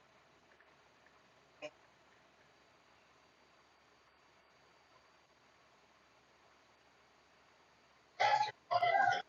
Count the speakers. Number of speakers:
zero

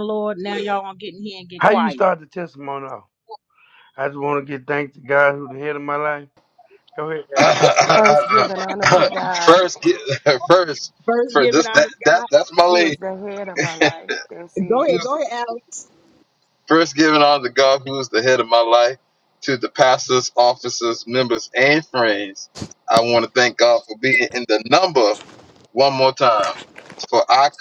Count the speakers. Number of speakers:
four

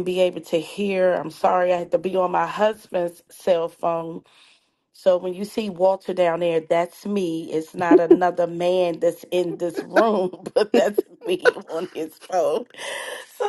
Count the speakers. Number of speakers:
one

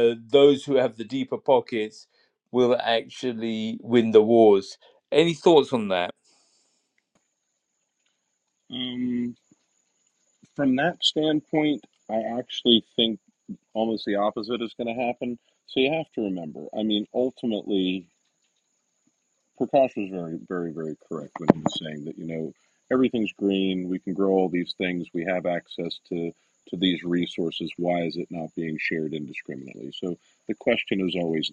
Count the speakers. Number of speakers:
two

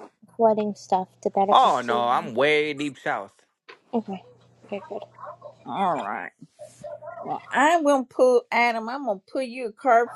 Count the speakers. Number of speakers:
three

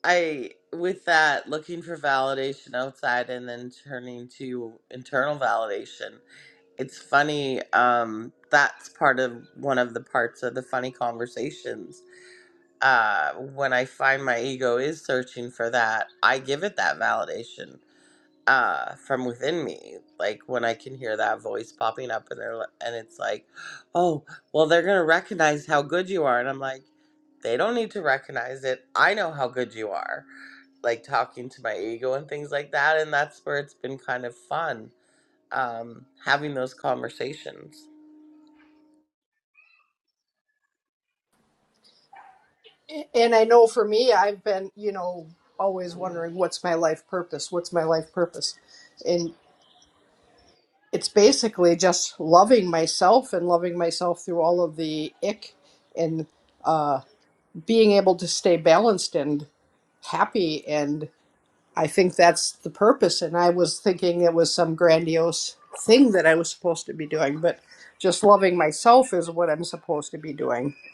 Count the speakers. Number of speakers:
two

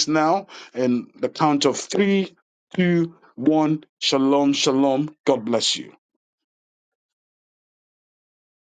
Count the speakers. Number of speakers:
one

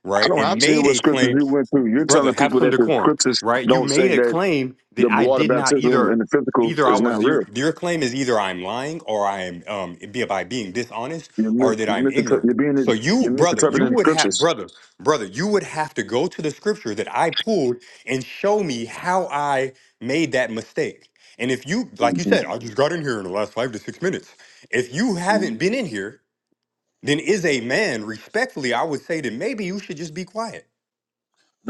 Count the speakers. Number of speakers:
two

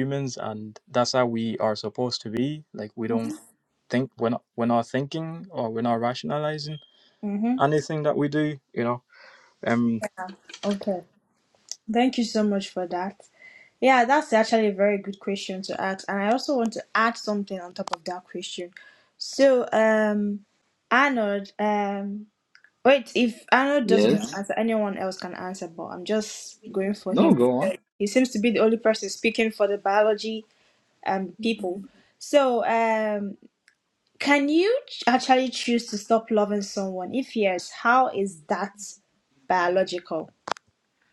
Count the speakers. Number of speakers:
three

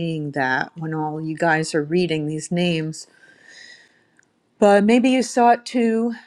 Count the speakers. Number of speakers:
one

